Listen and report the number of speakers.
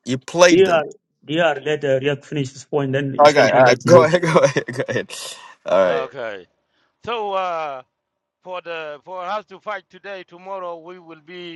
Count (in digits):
3